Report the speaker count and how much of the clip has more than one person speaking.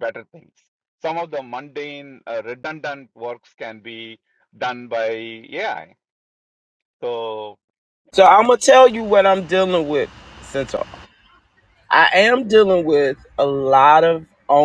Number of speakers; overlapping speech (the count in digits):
2, no overlap